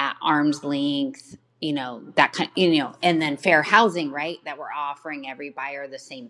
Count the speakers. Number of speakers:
one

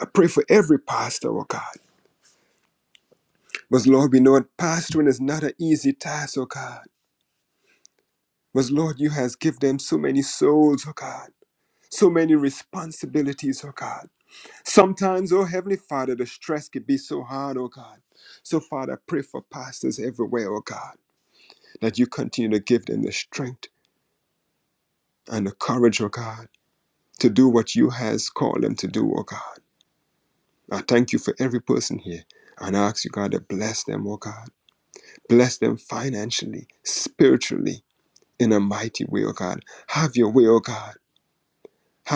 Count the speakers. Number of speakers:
one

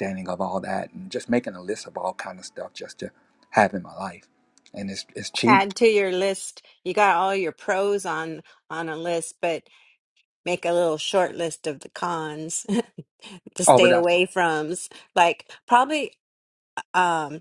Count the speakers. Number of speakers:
two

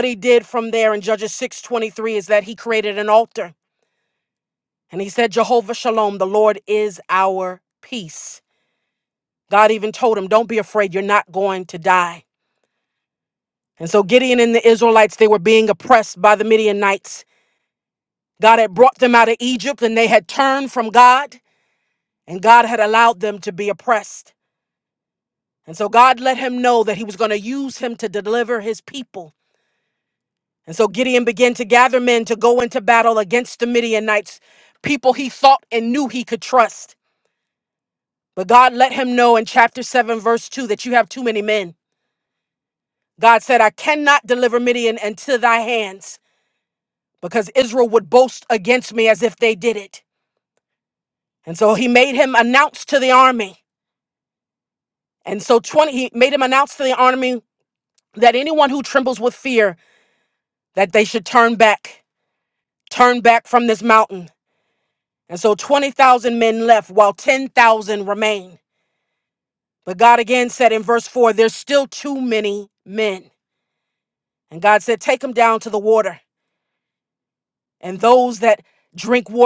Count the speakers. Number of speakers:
one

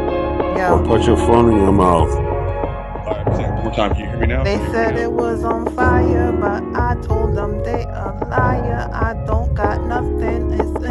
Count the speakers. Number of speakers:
three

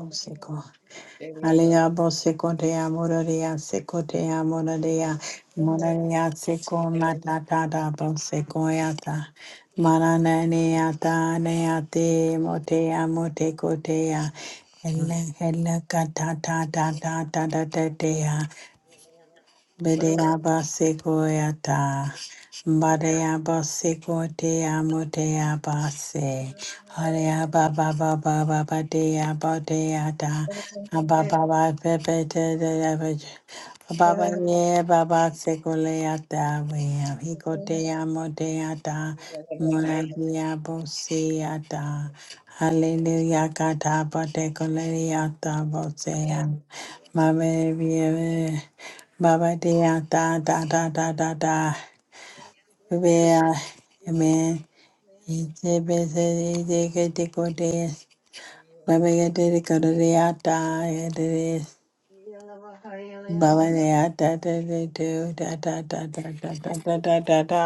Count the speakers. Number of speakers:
two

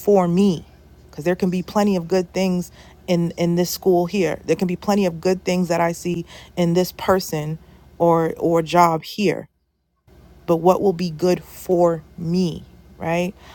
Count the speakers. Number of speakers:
one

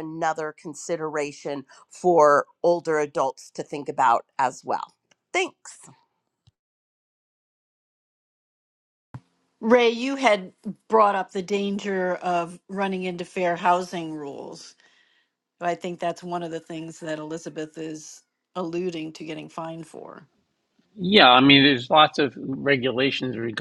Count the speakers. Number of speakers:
three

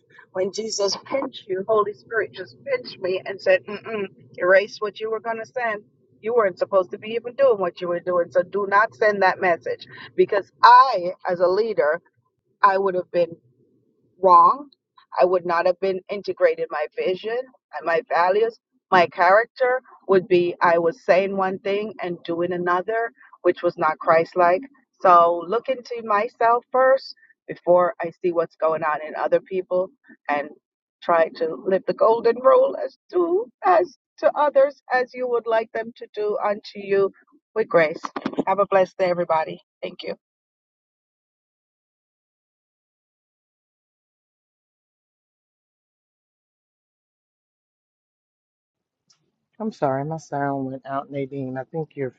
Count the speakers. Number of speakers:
two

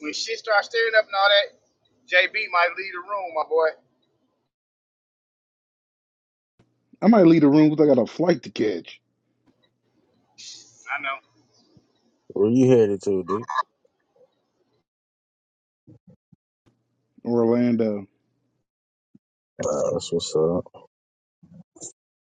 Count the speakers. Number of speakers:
three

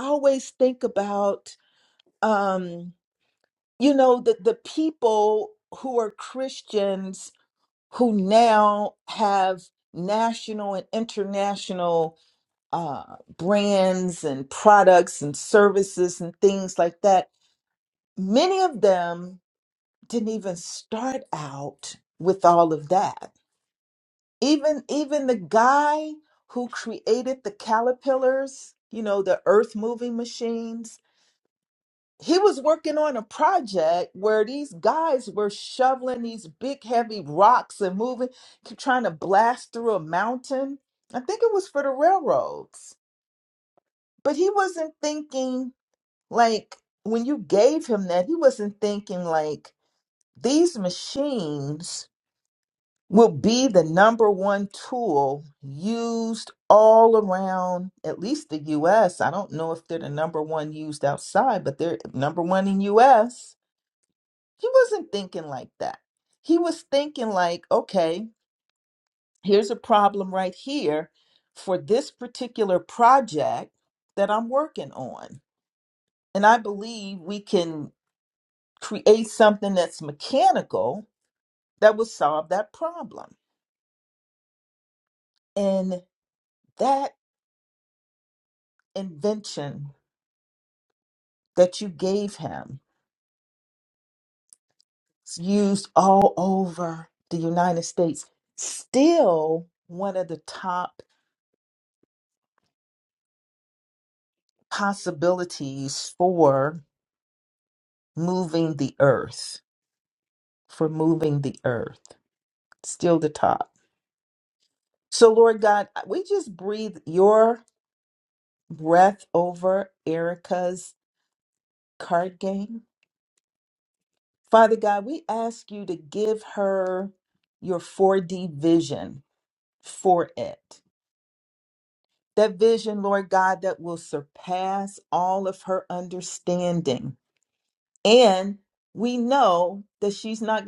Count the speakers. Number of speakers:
one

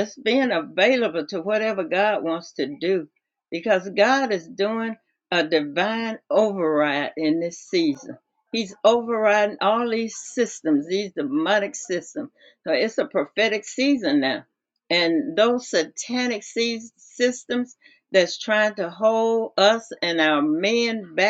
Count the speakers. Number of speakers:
one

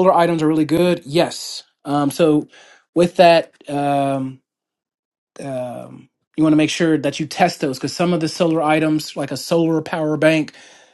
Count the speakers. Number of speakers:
one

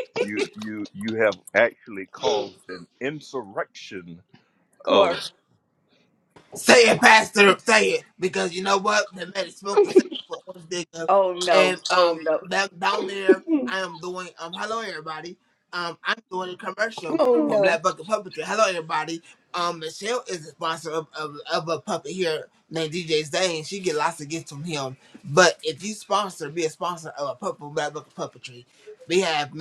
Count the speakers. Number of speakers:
three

